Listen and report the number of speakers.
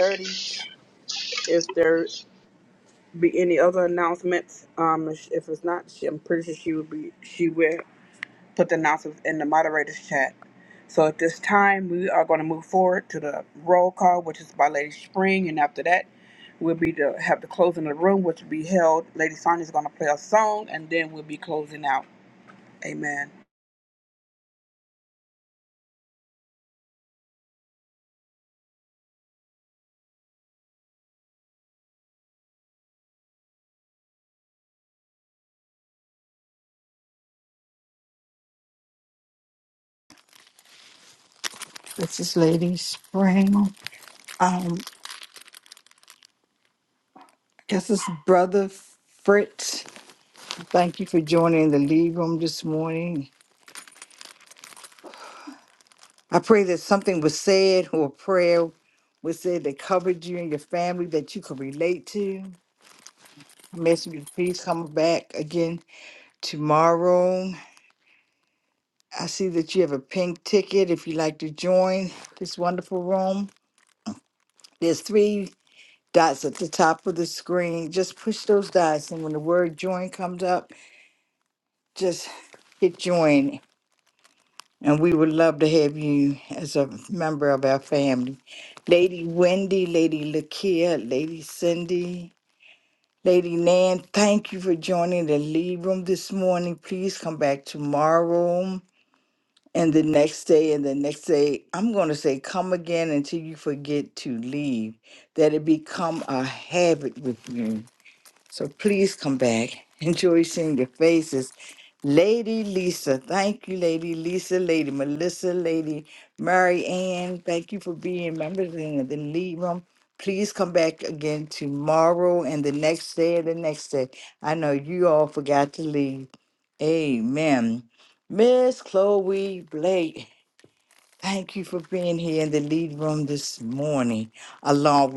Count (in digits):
2